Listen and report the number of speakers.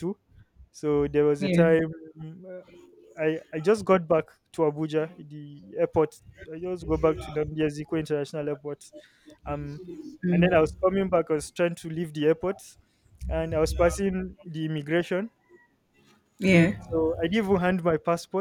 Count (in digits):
2